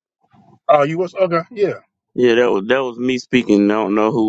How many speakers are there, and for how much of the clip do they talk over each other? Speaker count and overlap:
two, no overlap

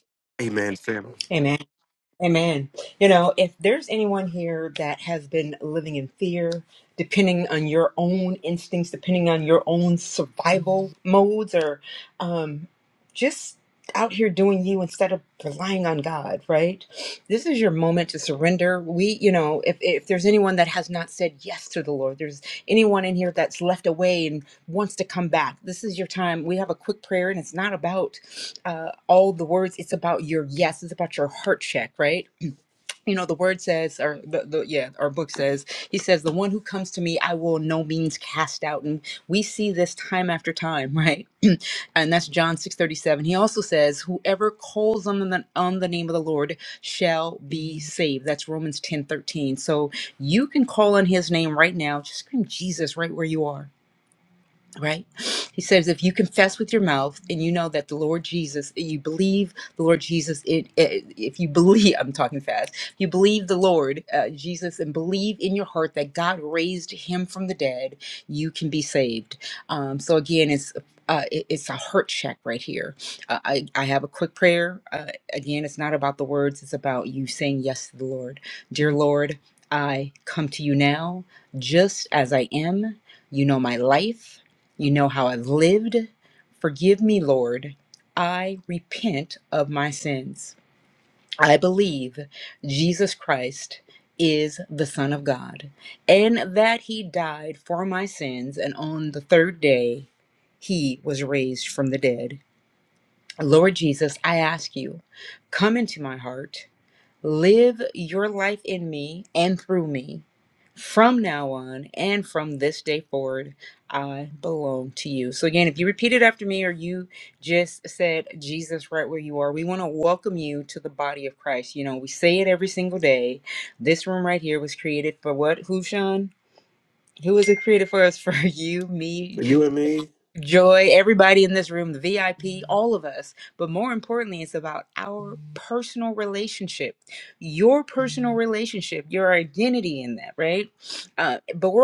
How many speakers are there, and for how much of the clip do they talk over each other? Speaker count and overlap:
two, under 1%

